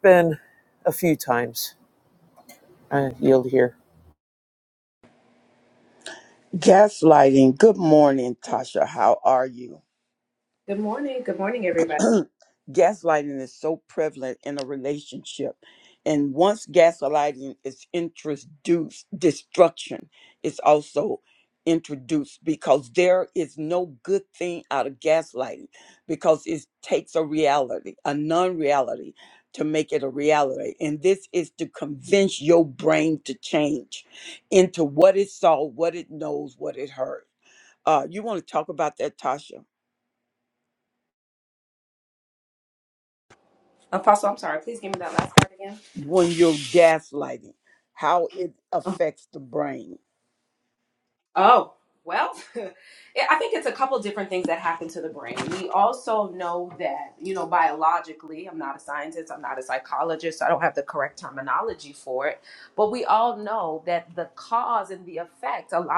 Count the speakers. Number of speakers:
3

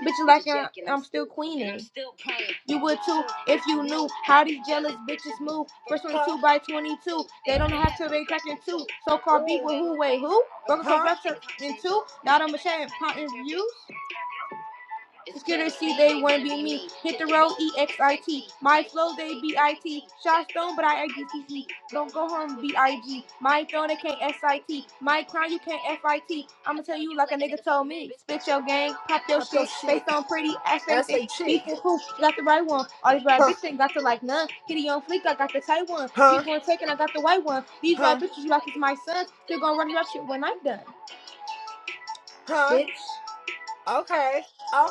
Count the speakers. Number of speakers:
2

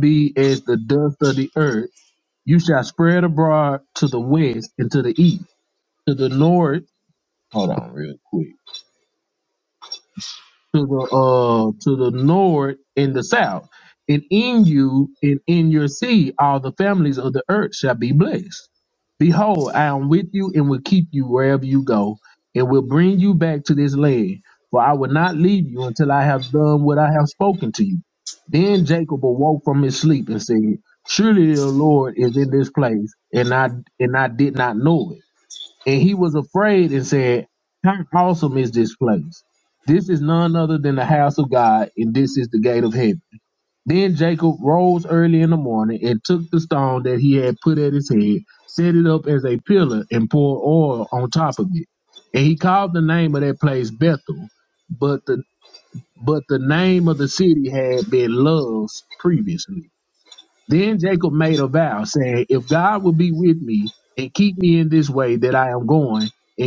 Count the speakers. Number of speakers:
1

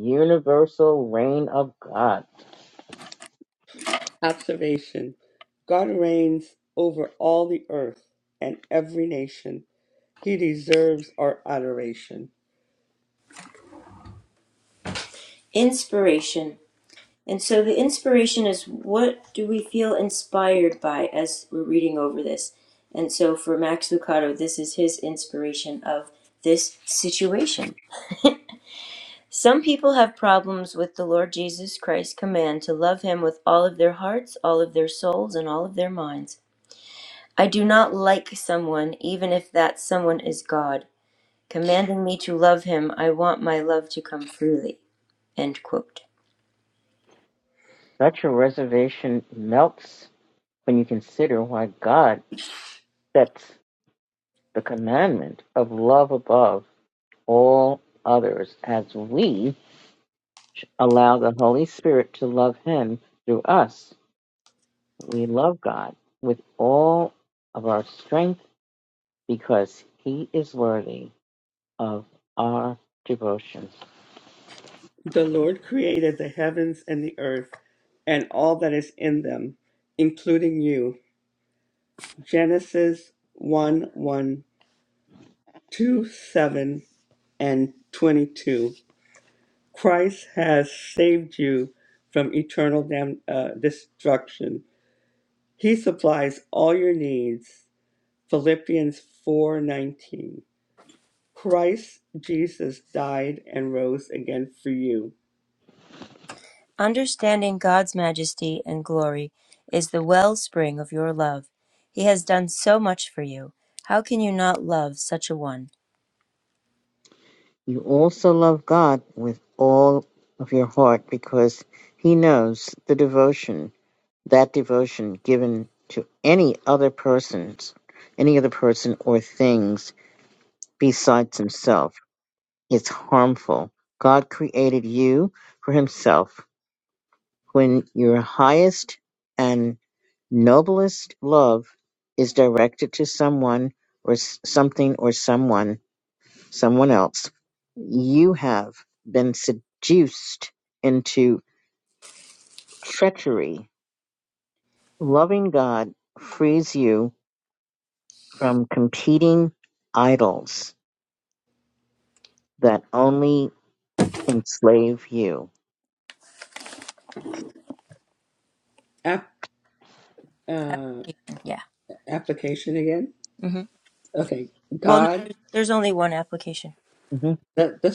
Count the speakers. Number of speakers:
3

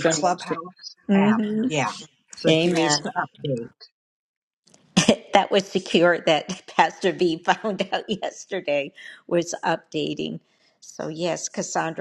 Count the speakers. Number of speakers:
2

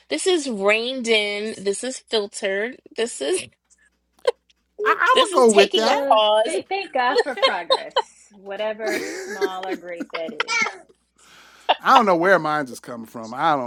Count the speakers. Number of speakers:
3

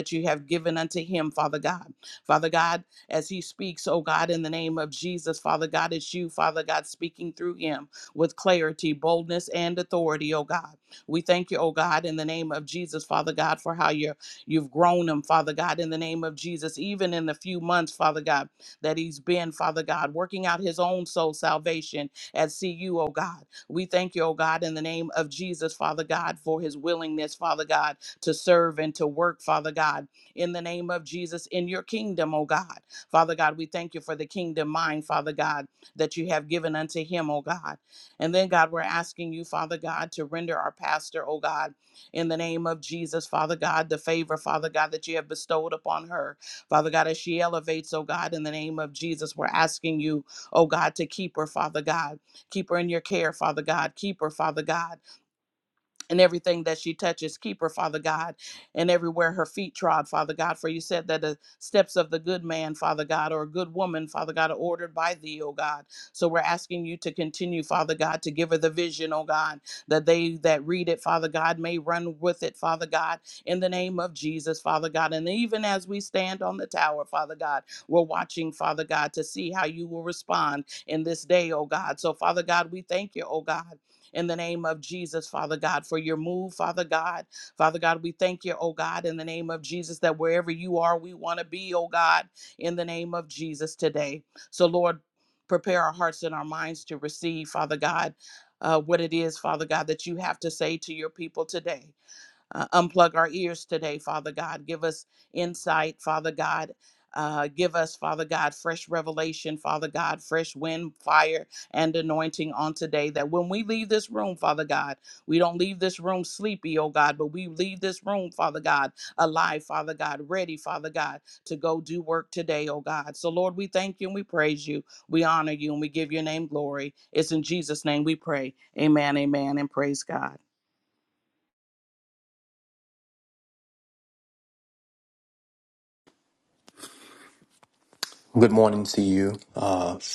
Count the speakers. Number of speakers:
2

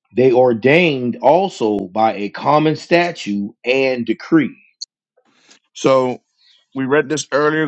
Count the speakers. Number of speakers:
2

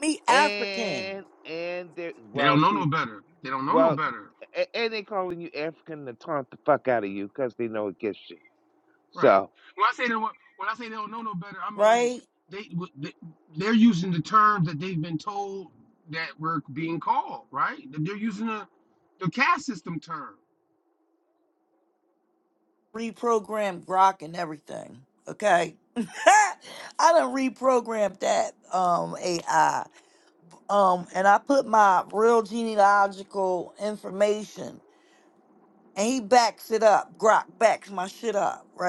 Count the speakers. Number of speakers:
3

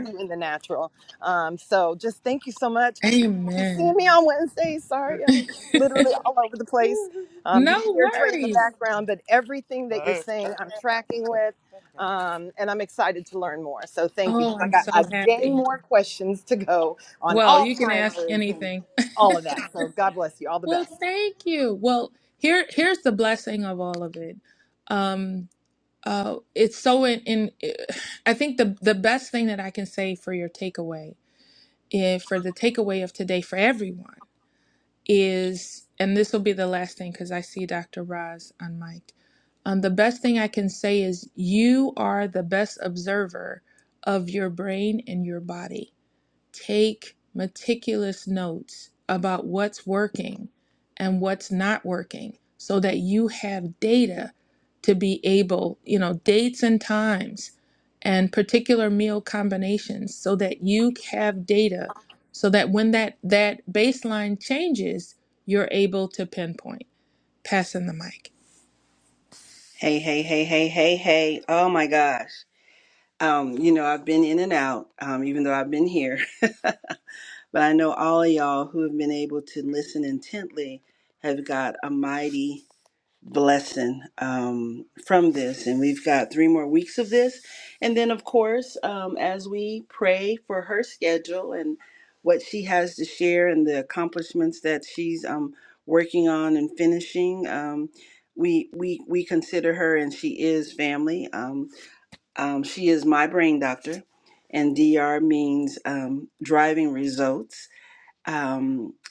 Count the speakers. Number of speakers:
3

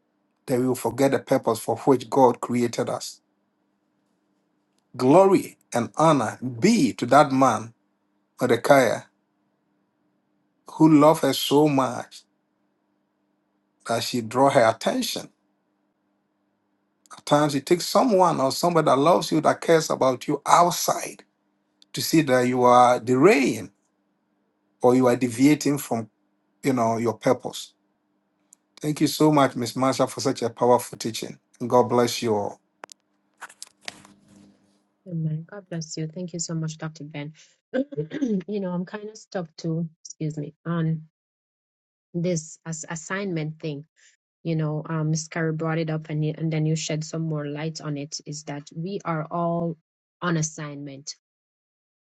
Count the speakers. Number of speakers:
2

